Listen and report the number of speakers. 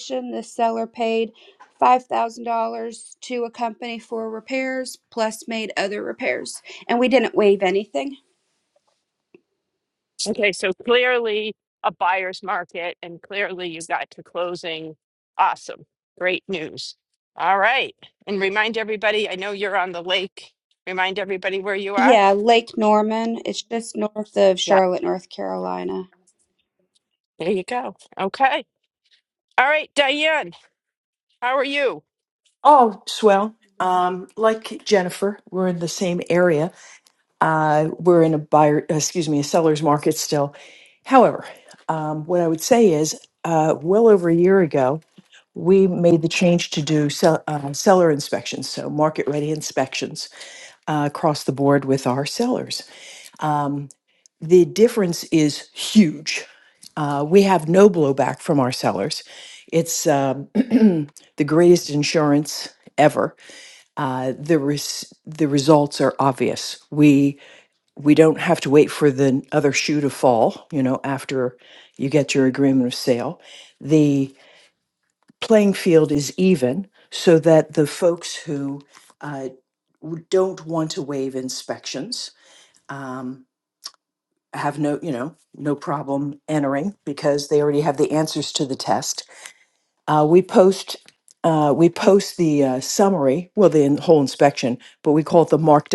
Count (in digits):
3